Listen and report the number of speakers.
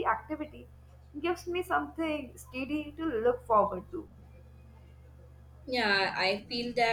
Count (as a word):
two